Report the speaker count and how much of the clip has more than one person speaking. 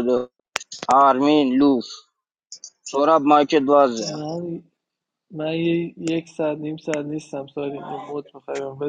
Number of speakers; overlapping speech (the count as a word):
two, about 2%